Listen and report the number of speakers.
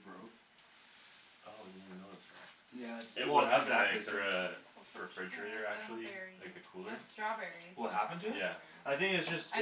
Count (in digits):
3